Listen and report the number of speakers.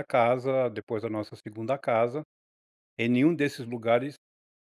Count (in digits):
1